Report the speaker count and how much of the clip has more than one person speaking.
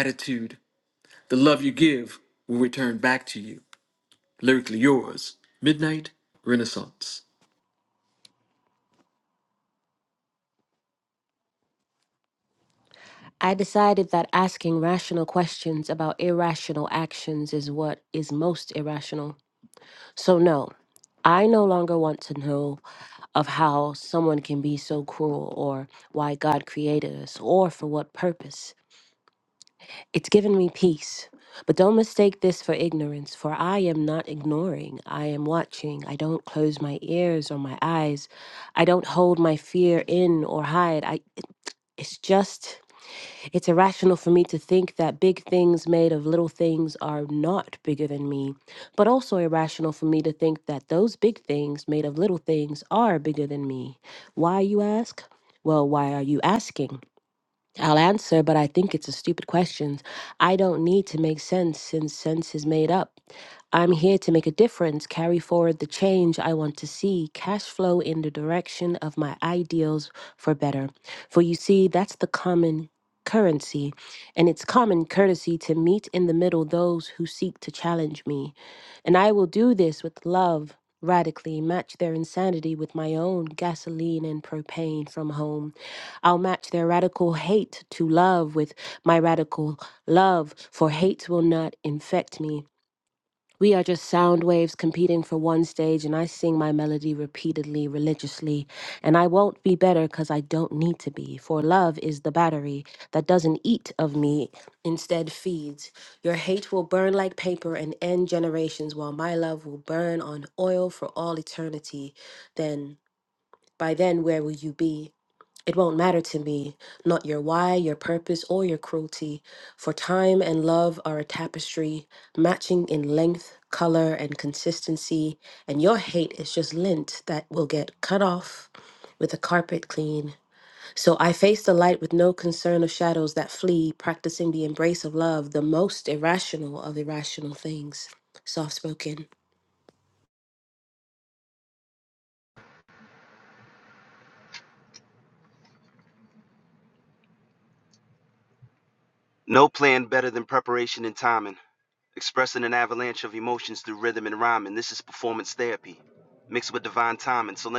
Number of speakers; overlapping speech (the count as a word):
three, no overlap